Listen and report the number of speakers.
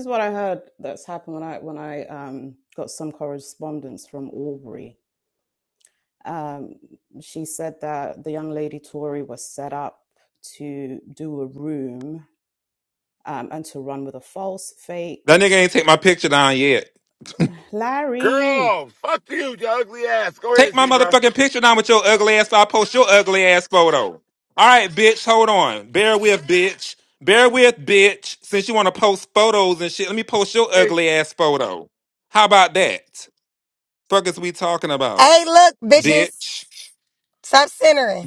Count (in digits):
4